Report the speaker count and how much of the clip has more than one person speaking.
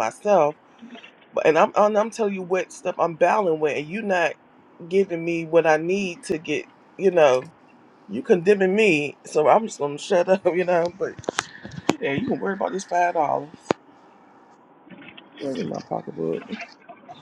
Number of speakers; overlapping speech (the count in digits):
1, no overlap